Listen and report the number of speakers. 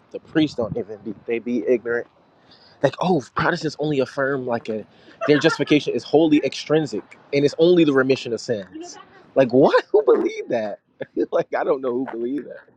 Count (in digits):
1